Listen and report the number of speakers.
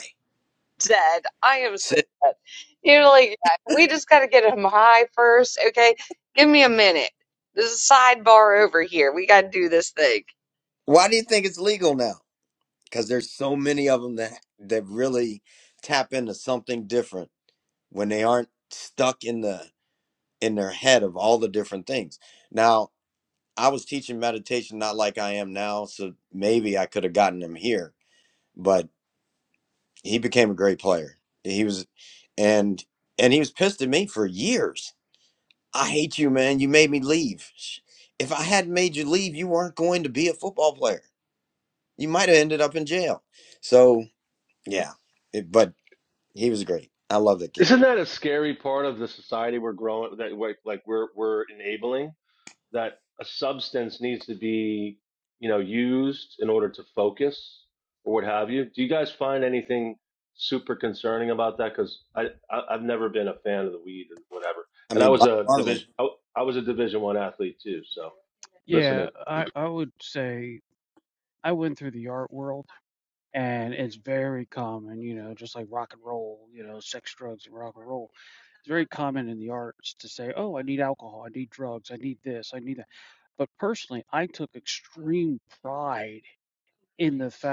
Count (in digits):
4